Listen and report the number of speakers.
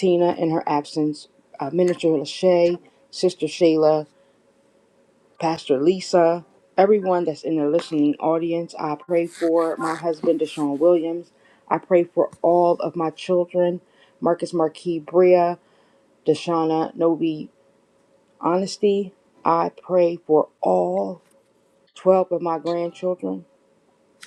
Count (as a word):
one